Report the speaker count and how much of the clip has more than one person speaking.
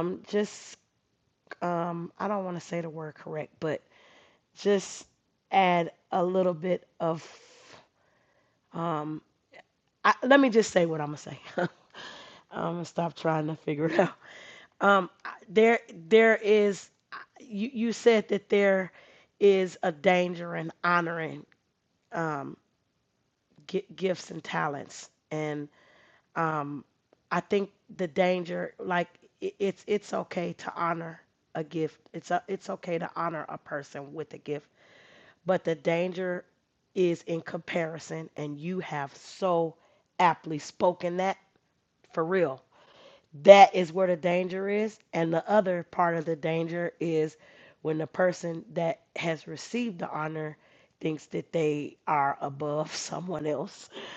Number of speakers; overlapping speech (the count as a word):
one, no overlap